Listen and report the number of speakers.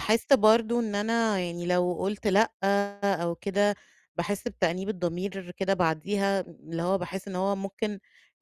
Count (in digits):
1